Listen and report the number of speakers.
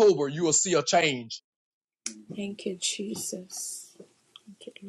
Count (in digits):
2